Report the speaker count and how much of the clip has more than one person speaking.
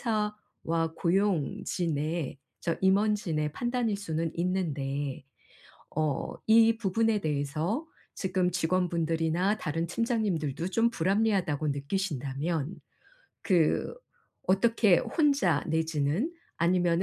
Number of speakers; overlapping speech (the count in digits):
1, no overlap